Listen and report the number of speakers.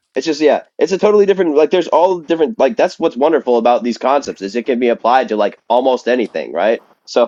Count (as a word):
one